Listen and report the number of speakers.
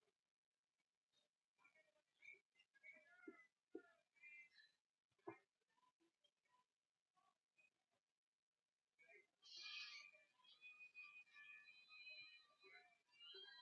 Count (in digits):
0